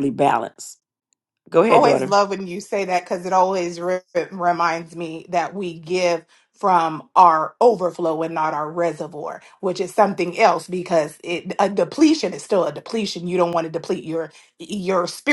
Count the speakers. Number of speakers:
2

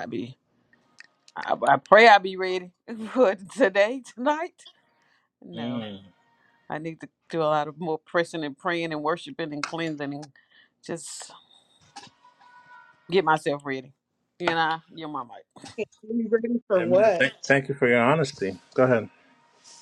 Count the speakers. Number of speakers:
3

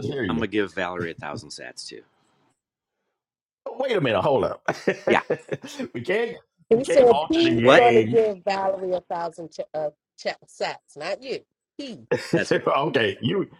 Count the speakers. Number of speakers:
3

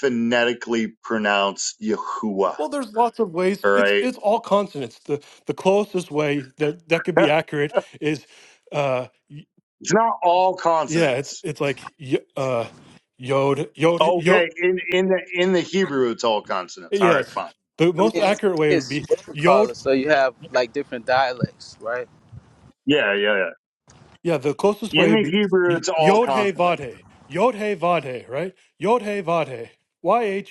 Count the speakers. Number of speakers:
3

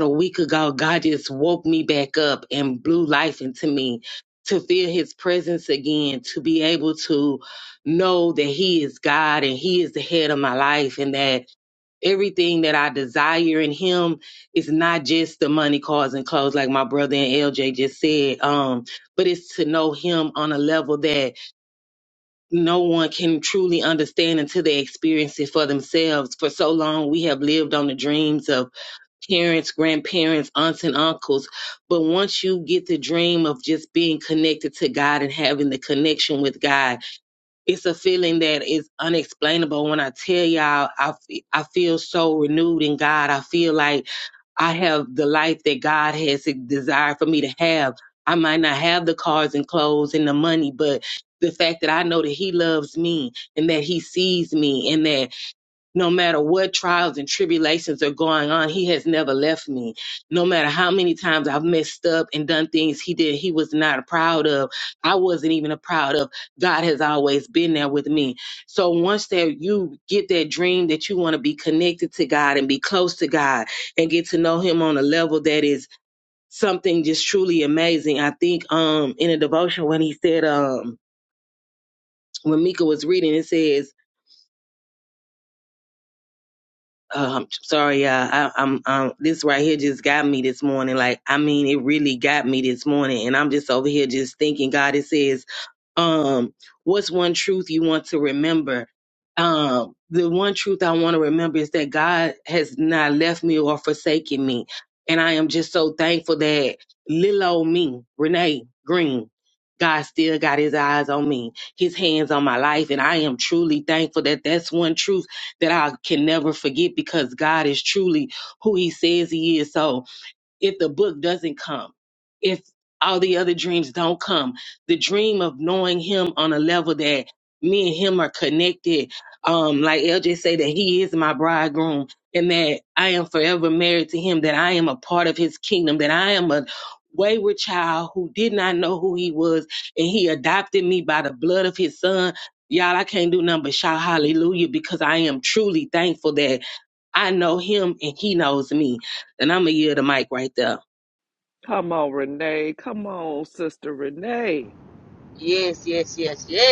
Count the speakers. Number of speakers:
3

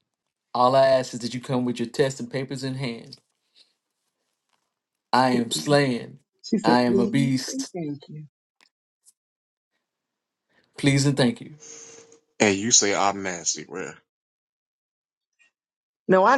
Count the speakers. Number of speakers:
3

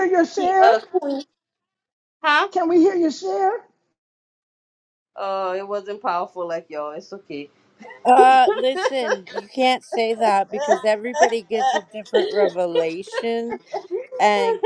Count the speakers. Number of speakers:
3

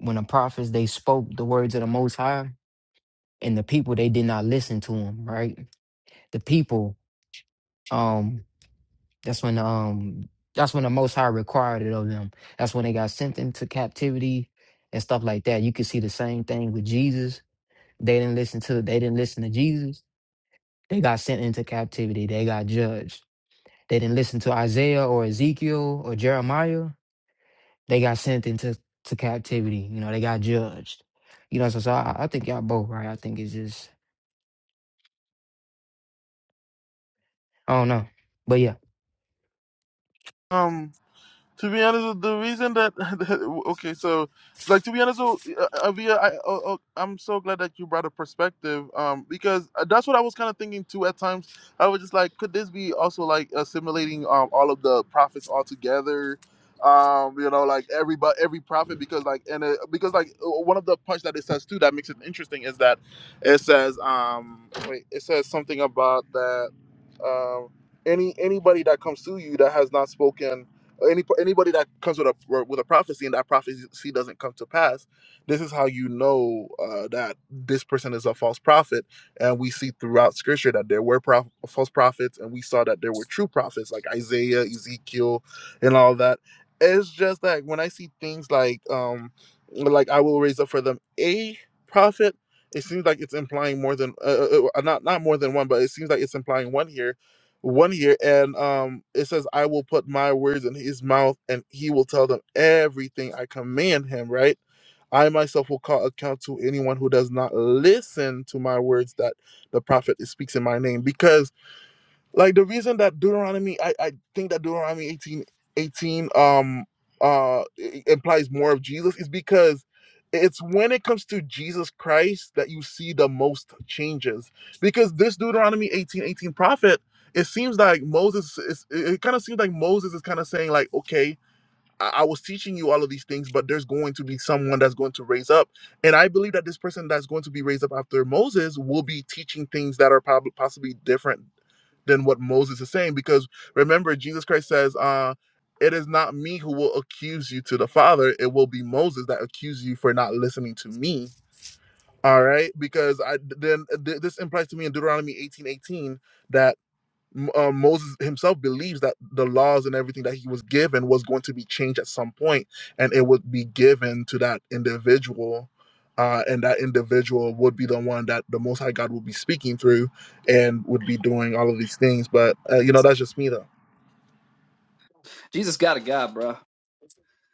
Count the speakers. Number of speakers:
3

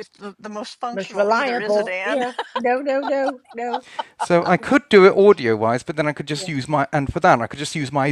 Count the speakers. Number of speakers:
3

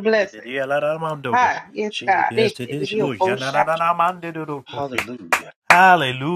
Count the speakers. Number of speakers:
3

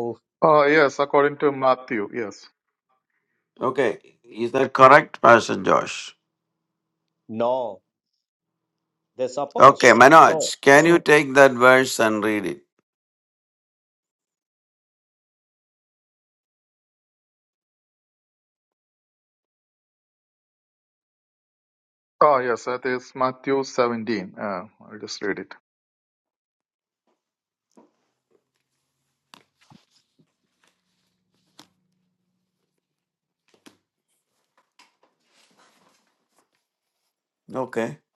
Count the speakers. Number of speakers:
3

